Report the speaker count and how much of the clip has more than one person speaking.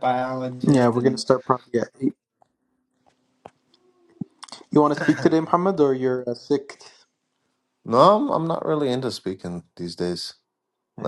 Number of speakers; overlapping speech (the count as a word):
three, about 6%